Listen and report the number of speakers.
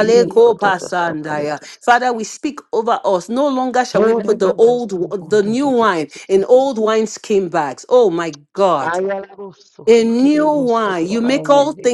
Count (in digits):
2